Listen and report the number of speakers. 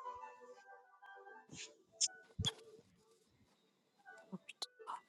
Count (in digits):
0